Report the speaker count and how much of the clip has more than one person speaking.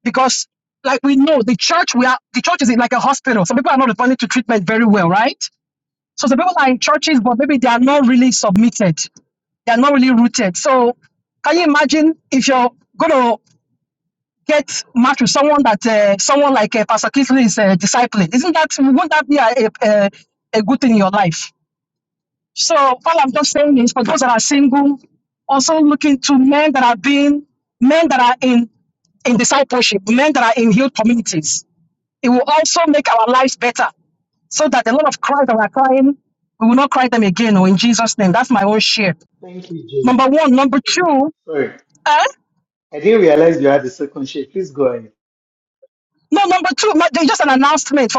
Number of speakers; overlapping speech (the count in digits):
2, under 1%